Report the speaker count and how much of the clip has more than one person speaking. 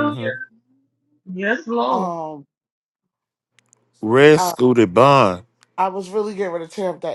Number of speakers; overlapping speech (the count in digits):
3, about 10%